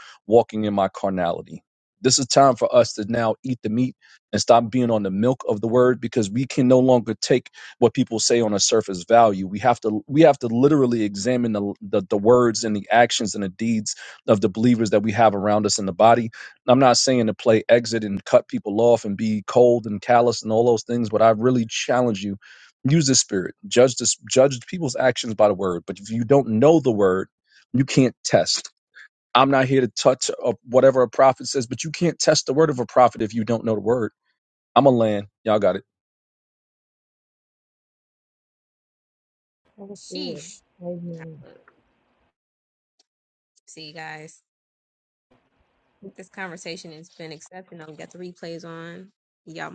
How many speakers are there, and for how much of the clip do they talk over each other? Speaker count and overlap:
3, about 1%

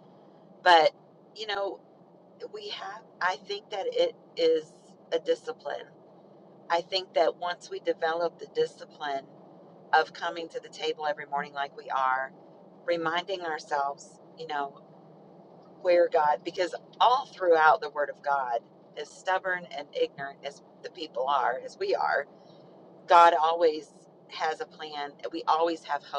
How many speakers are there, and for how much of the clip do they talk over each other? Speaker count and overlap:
1, no overlap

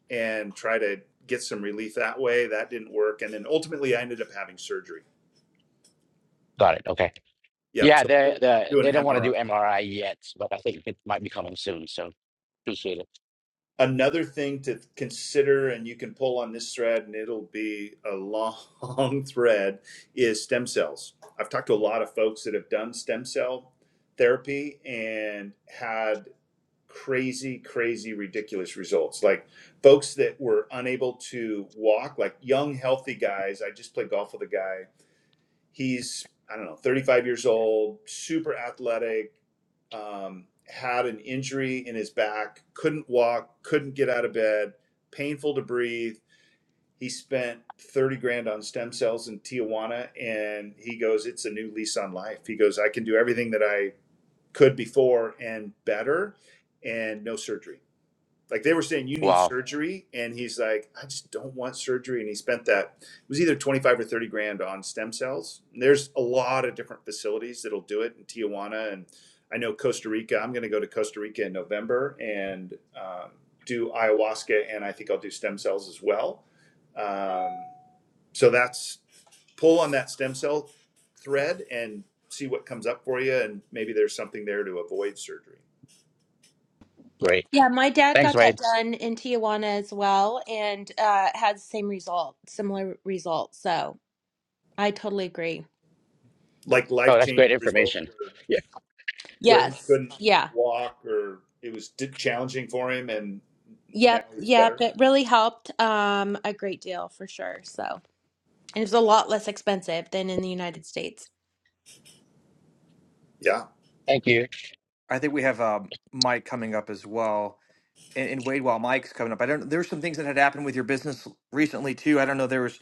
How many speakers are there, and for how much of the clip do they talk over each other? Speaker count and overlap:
4, about 3%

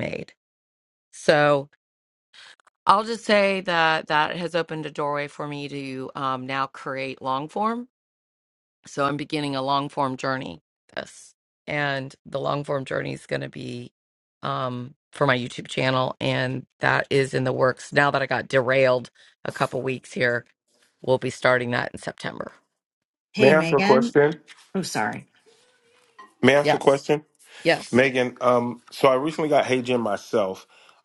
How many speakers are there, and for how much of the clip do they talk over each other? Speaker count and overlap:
3, about 3%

